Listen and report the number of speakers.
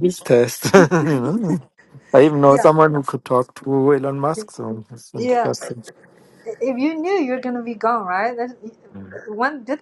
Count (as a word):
two